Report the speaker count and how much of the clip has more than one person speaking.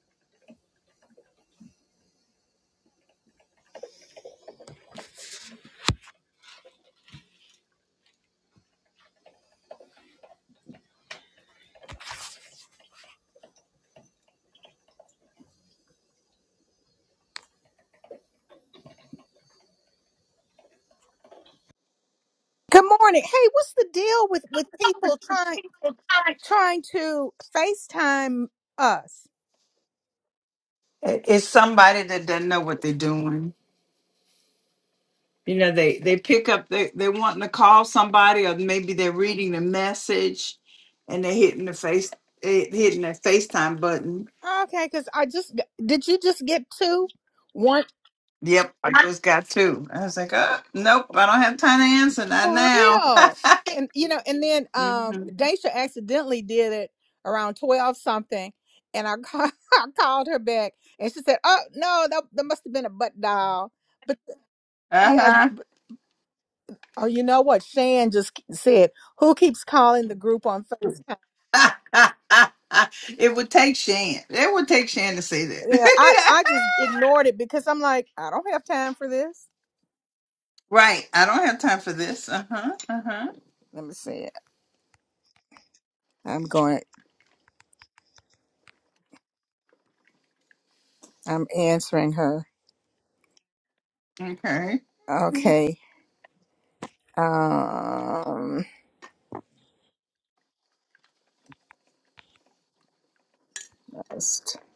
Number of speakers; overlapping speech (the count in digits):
2, about 2%